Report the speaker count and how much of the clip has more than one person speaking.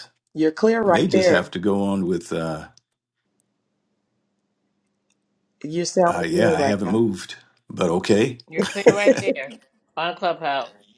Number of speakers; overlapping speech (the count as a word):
three, about 14%